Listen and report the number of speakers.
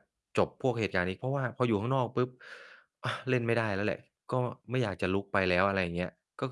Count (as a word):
one